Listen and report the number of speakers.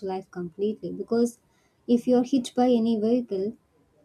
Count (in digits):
1